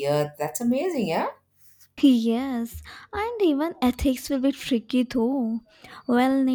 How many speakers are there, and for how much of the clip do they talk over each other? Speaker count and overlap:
2, no overlap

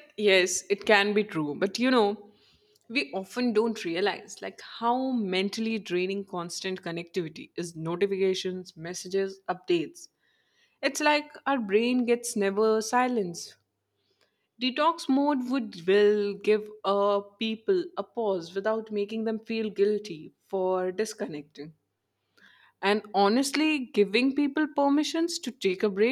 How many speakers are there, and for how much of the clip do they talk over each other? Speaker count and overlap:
1, no overlap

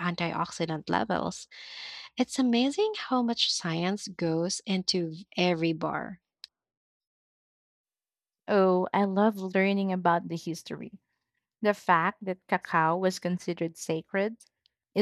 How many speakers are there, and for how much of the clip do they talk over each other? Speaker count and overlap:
2, no overlap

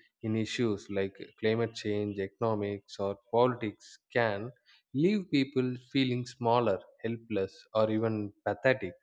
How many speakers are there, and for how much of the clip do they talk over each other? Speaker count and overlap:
1, no overlap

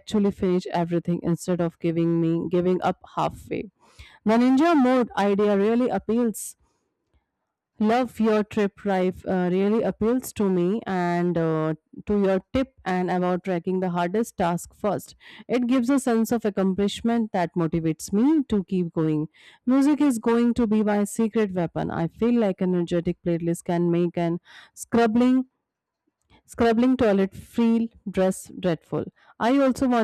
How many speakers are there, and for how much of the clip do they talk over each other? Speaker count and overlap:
1, no overlap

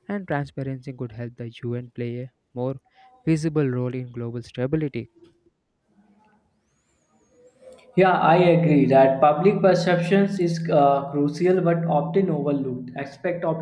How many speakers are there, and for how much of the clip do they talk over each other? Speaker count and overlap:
2, no overlap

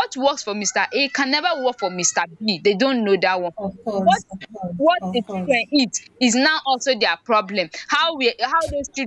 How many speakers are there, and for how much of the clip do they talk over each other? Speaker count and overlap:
2, about 9%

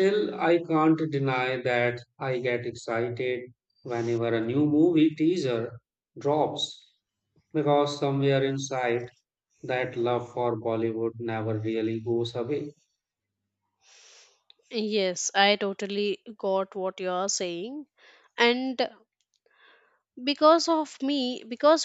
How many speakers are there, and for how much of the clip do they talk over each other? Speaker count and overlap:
2, no overlap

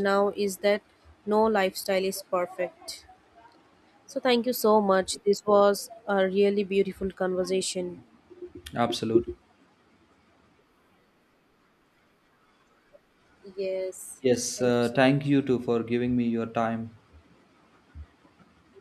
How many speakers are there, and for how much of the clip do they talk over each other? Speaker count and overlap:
2, about 3%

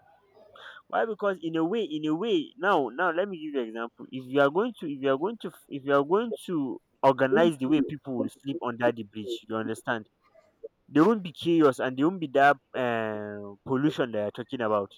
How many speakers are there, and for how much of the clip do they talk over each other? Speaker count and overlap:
1, no overlap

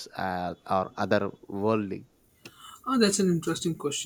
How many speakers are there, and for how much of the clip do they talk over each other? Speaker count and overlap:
2, no overlap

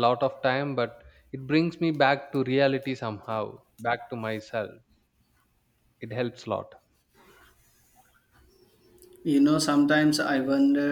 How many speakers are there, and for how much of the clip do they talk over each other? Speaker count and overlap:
2, no overlap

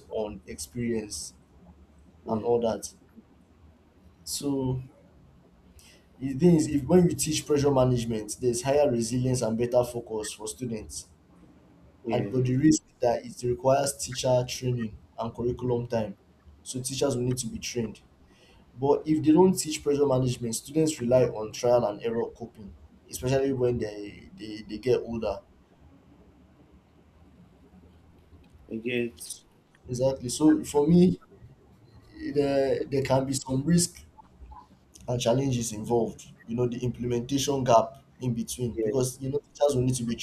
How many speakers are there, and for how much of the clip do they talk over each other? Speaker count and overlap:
2, about 2%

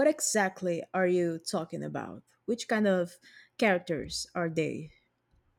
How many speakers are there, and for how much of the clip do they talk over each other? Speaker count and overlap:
1, no overlap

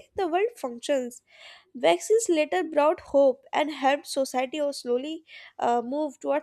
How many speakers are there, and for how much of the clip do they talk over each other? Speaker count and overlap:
1, no overlap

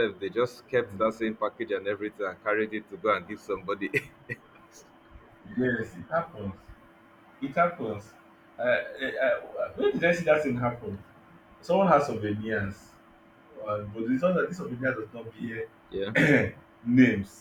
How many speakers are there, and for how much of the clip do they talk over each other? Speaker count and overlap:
2, under 1%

